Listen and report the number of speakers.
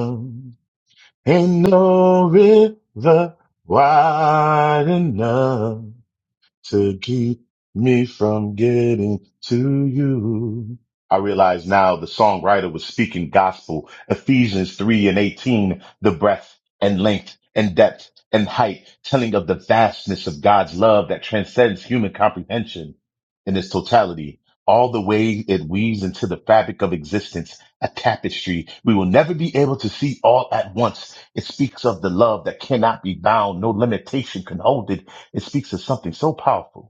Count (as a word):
one